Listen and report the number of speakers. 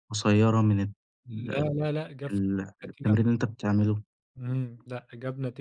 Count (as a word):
two